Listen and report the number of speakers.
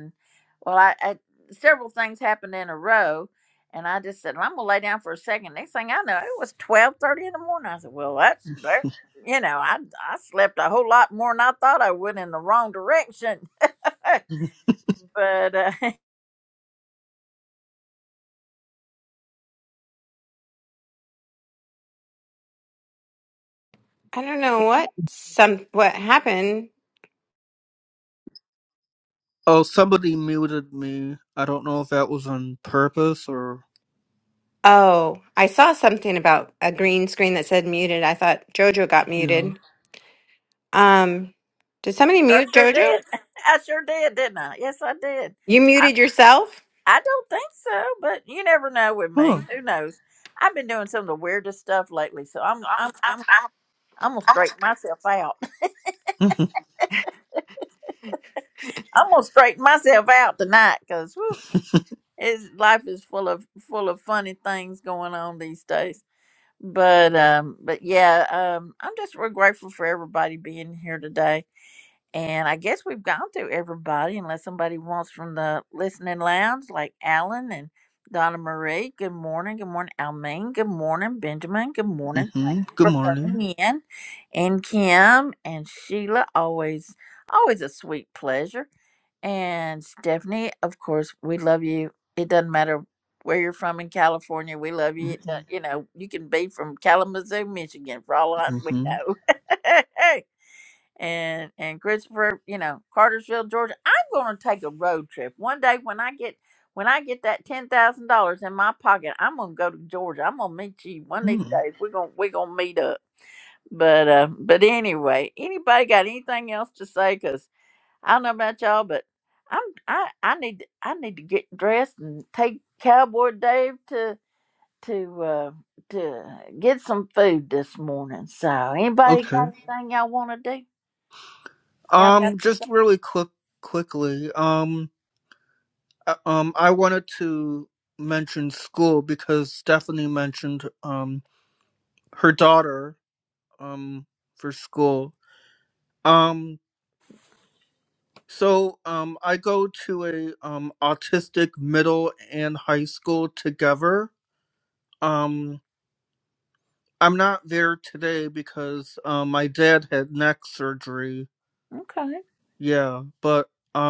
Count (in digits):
3